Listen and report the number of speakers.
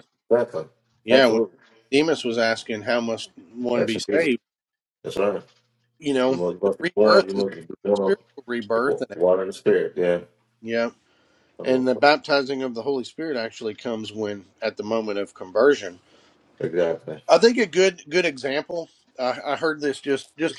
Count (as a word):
two